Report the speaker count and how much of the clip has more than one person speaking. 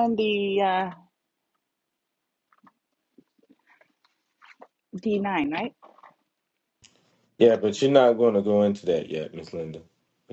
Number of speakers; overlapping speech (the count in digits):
2, no overlap